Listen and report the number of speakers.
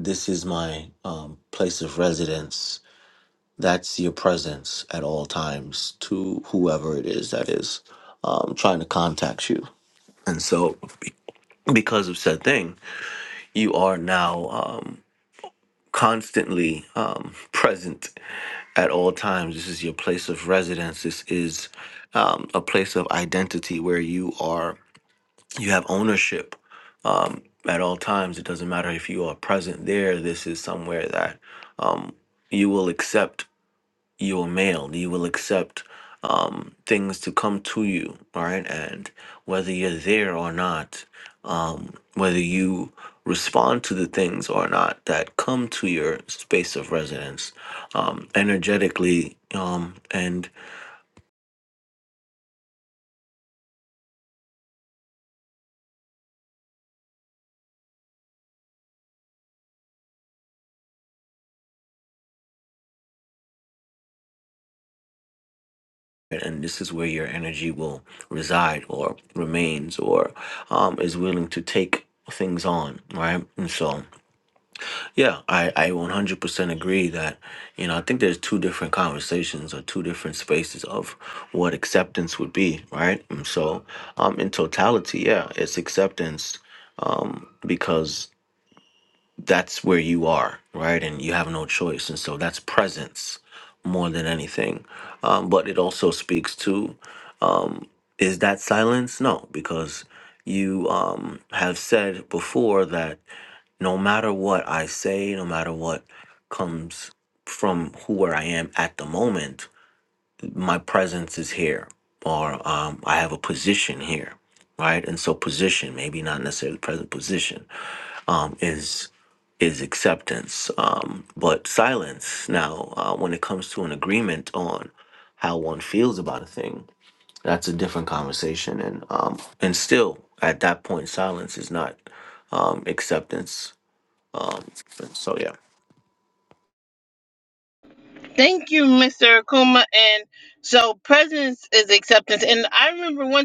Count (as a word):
two